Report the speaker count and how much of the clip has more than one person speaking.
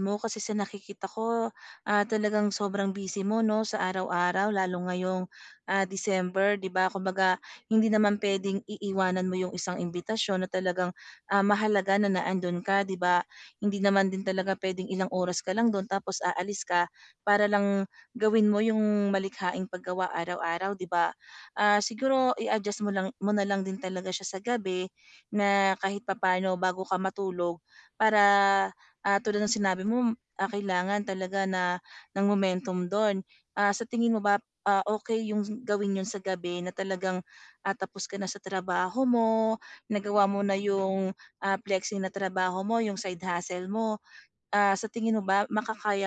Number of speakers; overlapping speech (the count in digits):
1, no overlap